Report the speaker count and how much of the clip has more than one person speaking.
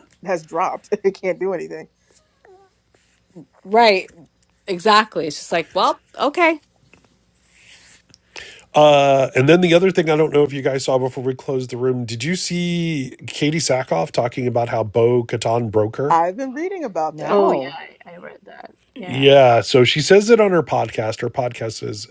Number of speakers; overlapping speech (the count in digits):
4, about 5%